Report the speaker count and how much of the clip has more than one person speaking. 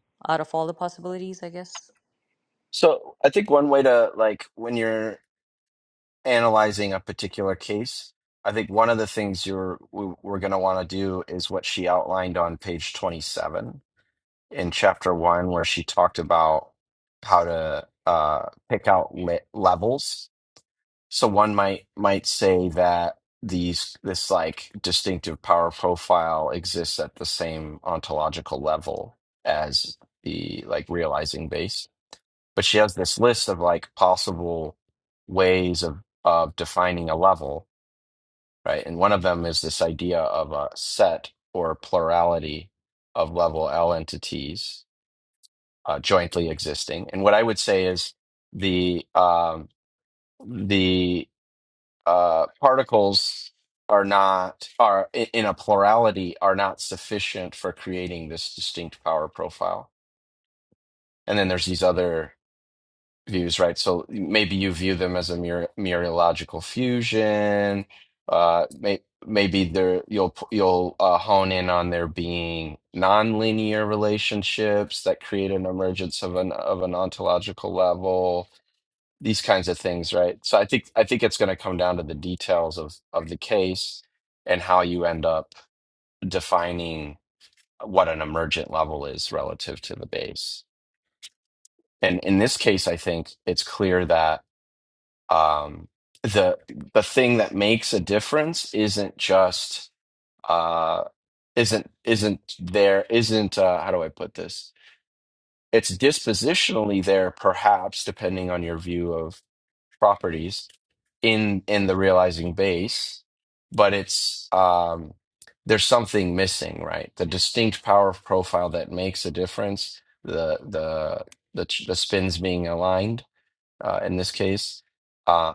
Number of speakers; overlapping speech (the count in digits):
2, no overlap